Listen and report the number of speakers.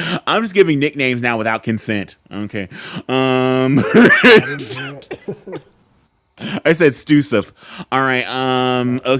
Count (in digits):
2